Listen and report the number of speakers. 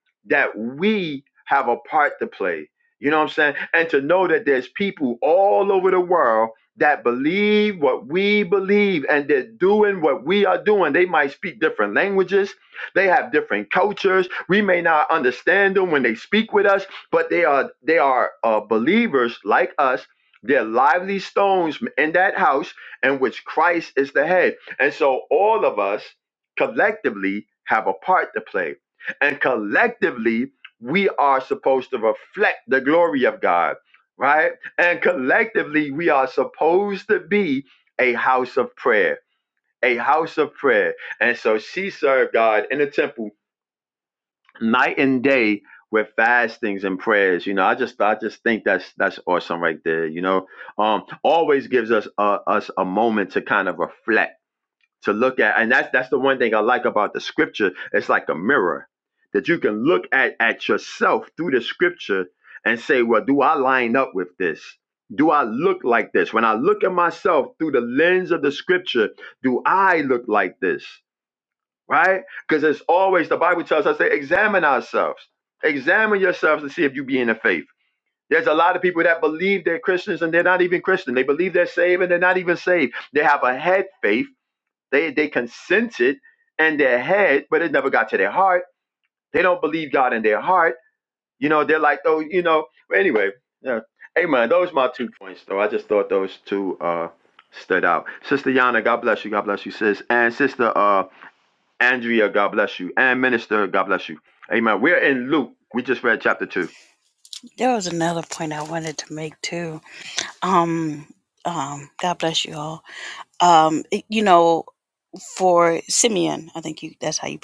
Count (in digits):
2